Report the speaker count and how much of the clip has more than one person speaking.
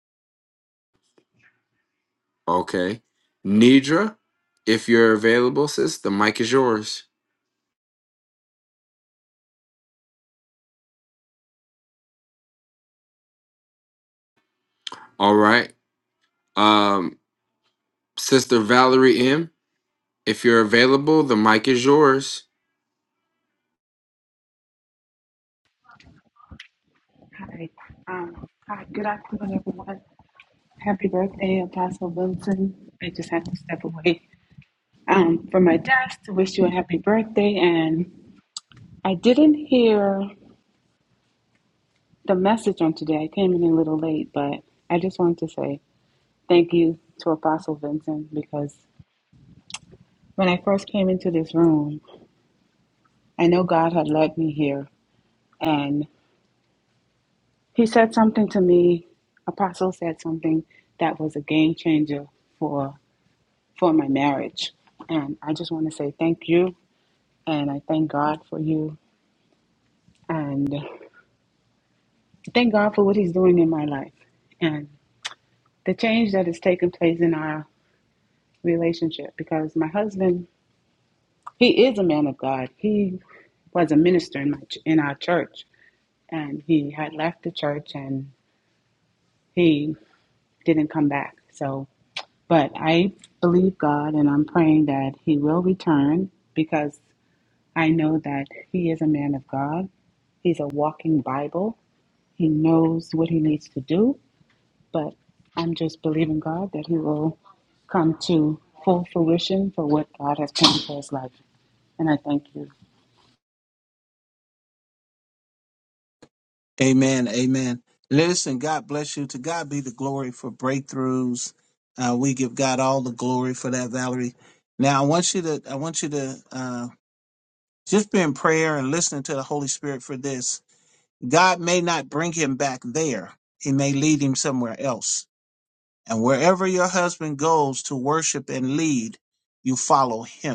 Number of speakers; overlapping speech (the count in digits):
3, no overlap